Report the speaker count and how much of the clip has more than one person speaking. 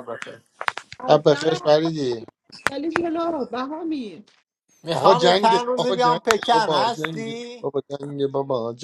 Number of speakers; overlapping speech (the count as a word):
three, about 33%